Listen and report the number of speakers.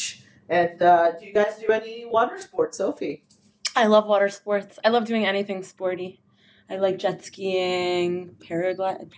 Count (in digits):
2